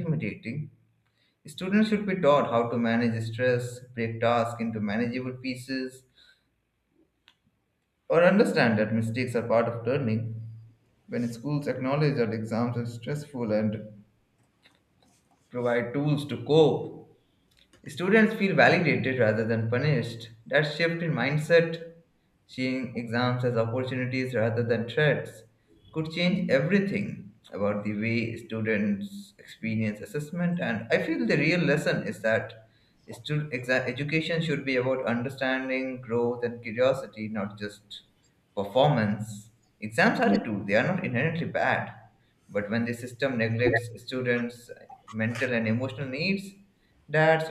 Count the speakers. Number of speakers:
one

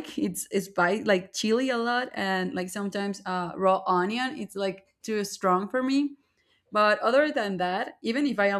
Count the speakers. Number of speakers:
one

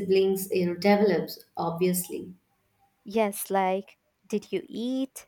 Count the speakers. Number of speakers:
two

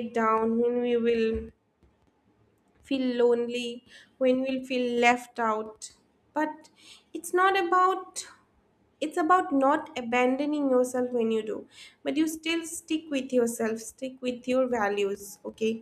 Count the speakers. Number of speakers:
one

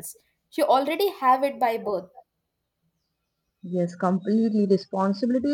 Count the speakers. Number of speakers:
two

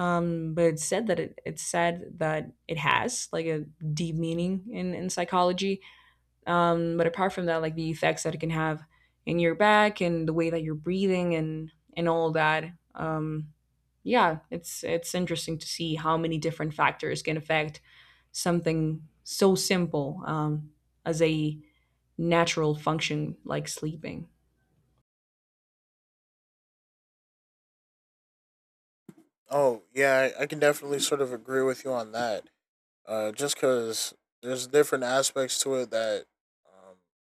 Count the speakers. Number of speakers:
two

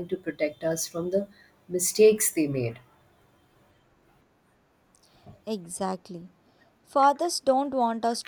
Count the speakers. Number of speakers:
two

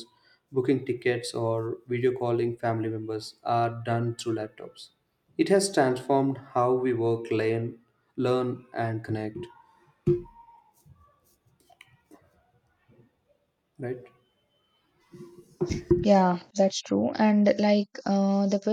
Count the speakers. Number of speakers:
two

